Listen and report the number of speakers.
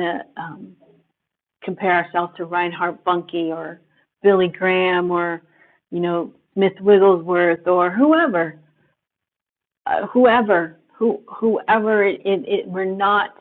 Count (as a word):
one